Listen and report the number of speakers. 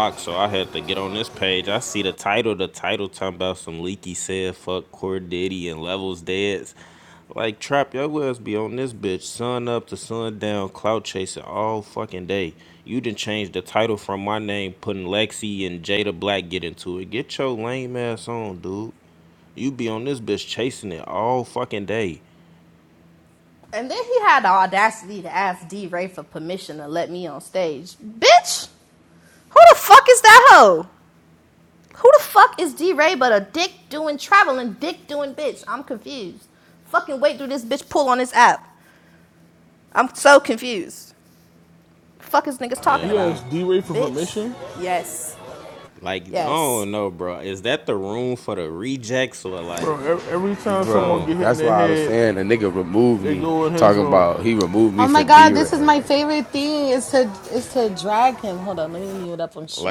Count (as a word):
five